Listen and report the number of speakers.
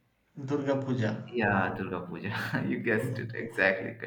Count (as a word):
two